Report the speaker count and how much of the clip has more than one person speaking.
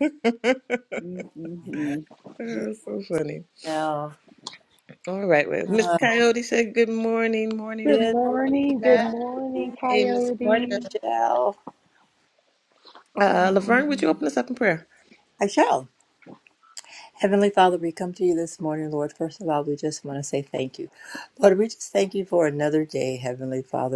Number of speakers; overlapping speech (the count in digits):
3, about 14%